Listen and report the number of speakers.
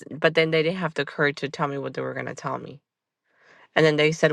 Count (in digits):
1